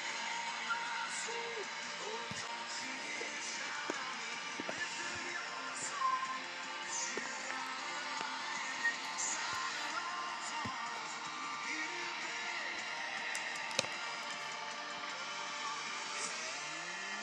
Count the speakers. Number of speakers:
zero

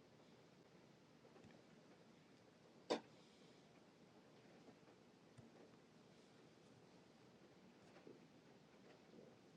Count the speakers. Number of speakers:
zero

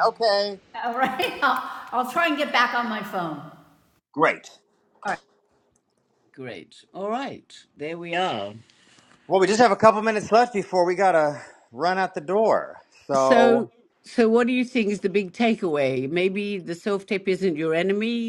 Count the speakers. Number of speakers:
three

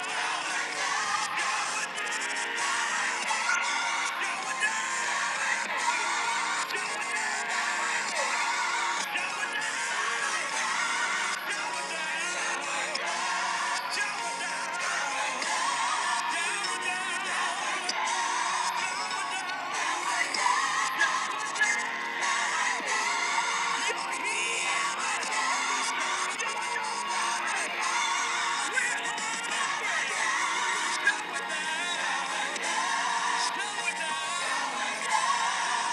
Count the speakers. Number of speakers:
zero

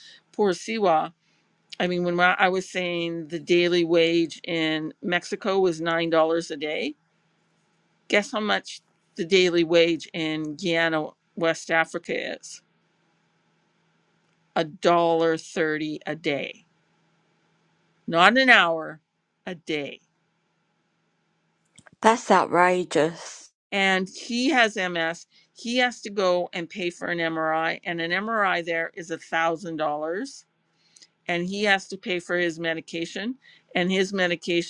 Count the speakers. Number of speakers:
two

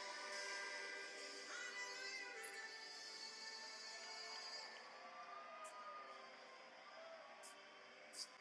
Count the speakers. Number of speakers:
zero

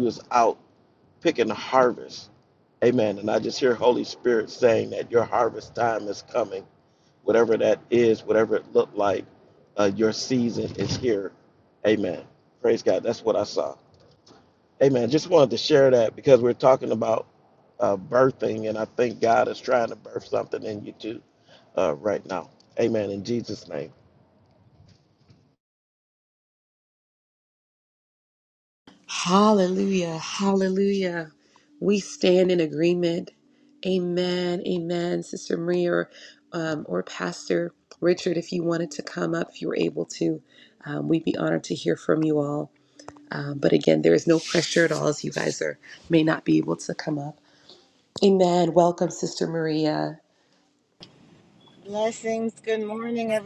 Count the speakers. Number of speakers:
three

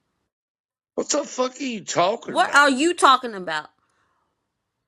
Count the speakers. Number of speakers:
two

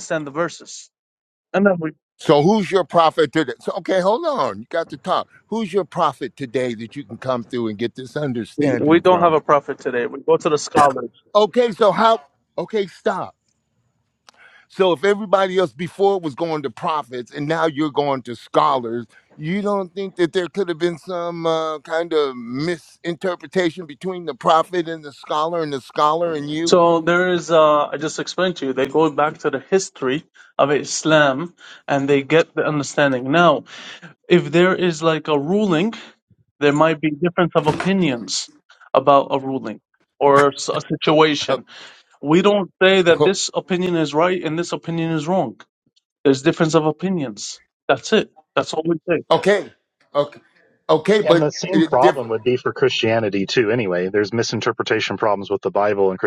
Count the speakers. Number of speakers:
three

